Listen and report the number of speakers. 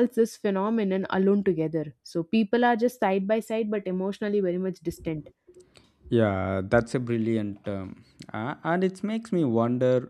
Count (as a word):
two